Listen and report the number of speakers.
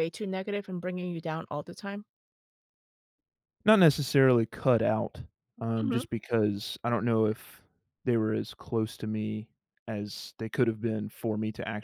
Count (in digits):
2